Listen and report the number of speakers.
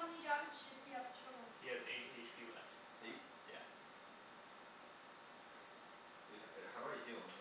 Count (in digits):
3